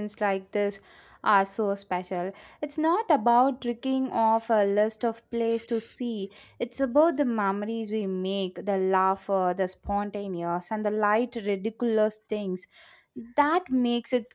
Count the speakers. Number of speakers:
1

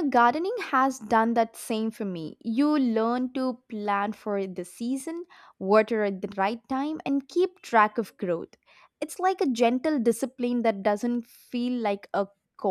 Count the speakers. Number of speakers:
1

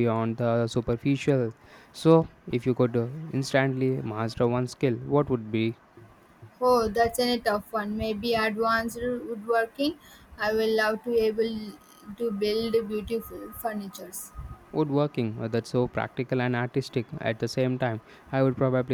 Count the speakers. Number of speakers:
2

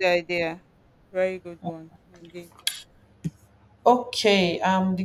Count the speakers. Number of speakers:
2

